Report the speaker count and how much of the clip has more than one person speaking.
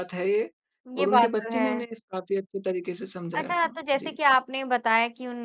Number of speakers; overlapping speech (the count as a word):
two, about 32%